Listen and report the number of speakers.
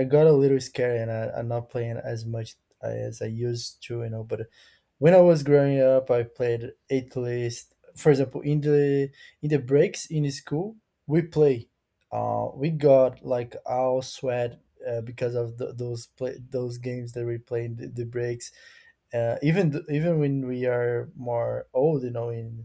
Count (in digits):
1